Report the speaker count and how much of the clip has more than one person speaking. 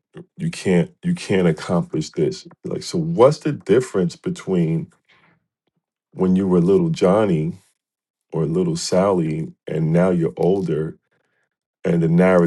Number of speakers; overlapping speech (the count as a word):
one, no overlap